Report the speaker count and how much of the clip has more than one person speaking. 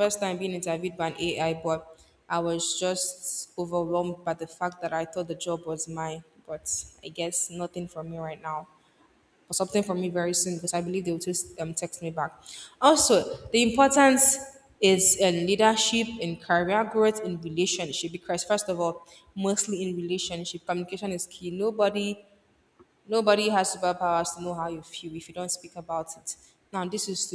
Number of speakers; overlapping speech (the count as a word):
one, no overlap